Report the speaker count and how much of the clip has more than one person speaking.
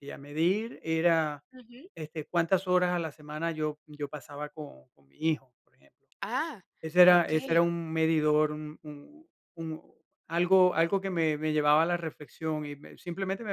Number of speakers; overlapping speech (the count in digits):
2, about 5%